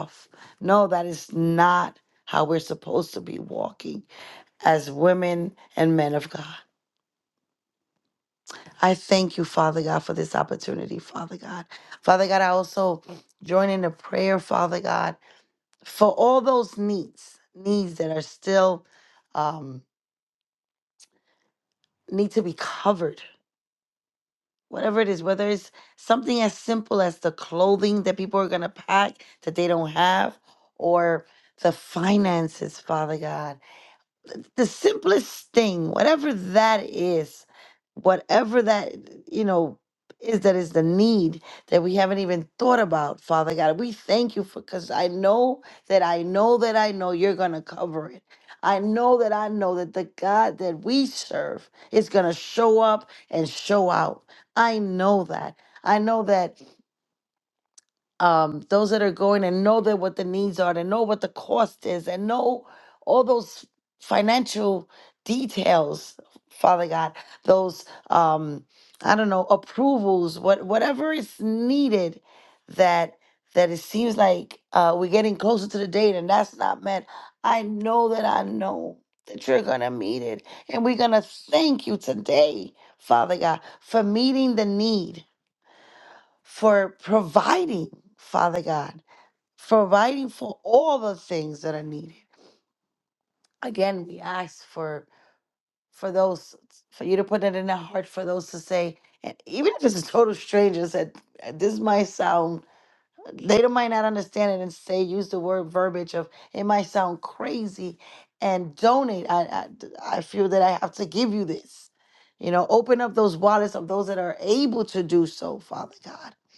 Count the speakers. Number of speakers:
one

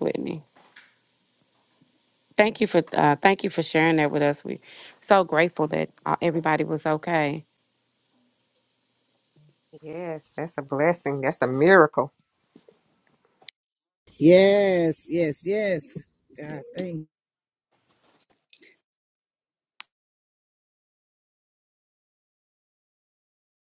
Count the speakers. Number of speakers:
three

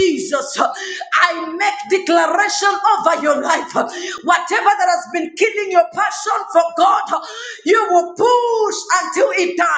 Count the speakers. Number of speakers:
one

